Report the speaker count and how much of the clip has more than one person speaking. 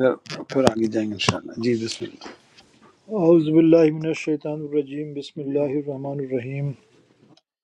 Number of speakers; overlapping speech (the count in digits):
2, no overlap